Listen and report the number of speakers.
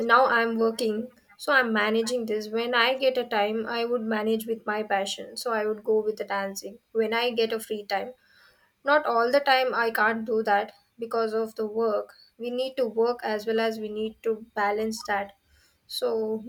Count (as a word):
one